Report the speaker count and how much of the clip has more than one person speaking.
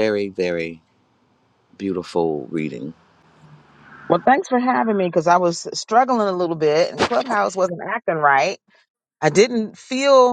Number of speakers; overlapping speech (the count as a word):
two, no overlap